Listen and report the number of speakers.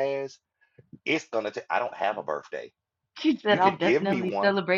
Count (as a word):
two